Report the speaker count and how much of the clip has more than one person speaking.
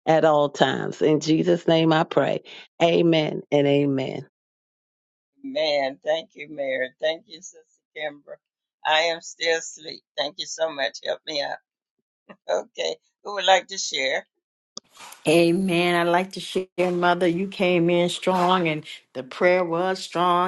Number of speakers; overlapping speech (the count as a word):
three, no overlap